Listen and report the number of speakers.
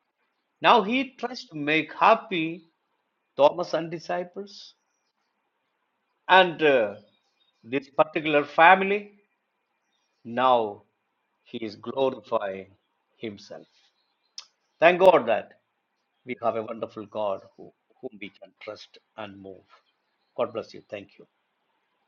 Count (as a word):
one